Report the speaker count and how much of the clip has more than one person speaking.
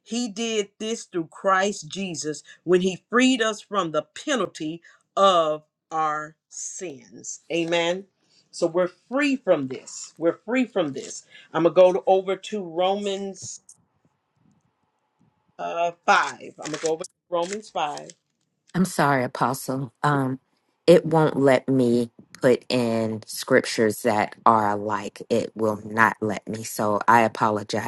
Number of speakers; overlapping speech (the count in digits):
2, no overlap